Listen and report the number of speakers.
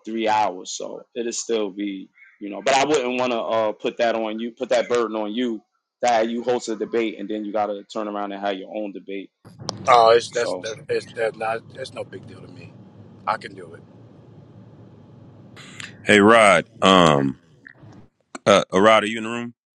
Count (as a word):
three